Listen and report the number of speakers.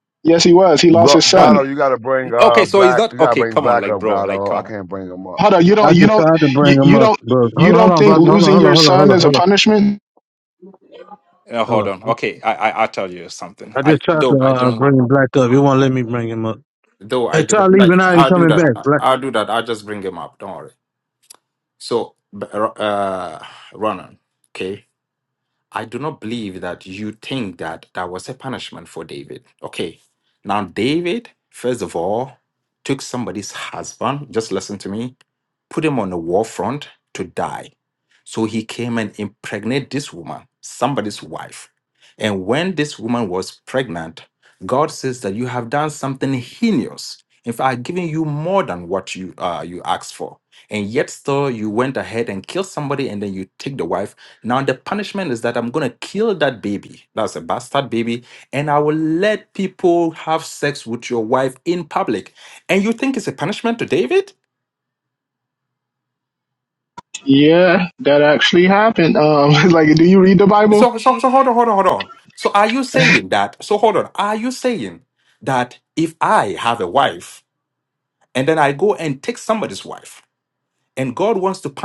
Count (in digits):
4